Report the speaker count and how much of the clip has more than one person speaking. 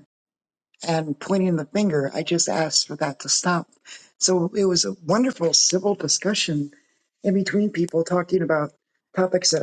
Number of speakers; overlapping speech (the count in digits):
1, no overlap